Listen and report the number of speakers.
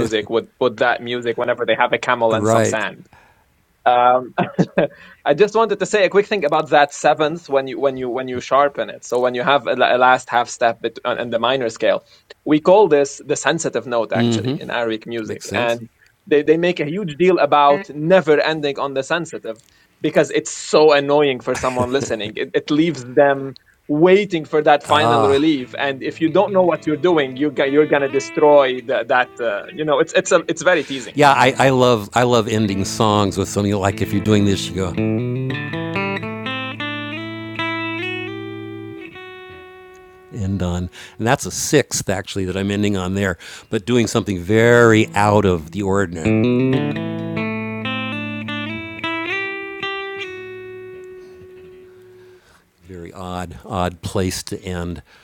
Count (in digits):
2